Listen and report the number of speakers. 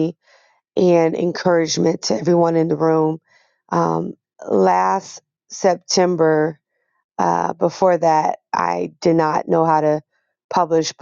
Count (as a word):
one